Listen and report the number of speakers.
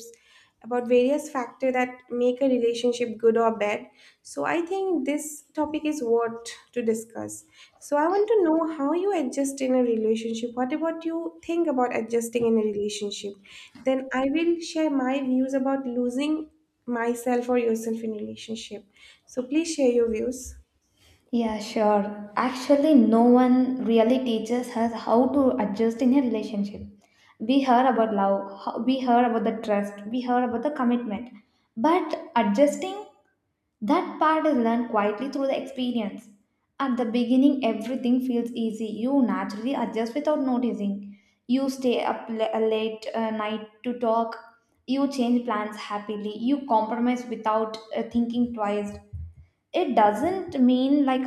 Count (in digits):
2